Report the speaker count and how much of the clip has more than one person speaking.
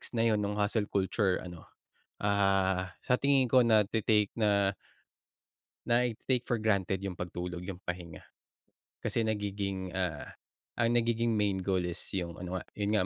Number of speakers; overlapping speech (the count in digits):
1, no overlap